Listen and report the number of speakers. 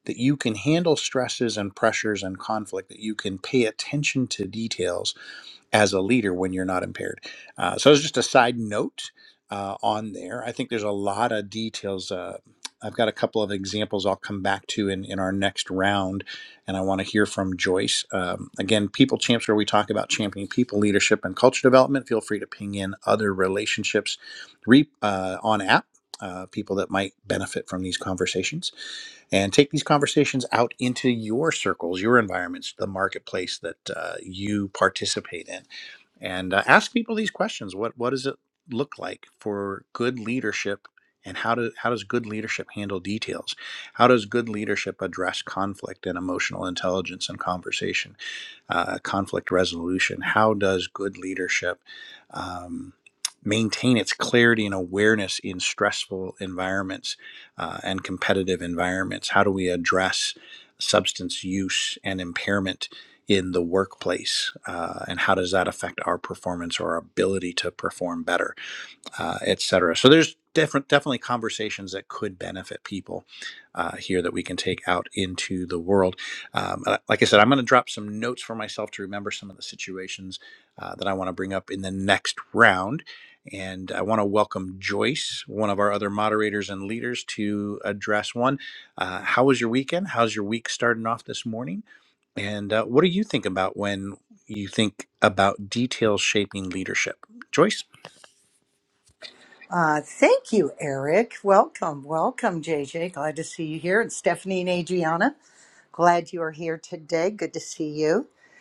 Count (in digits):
2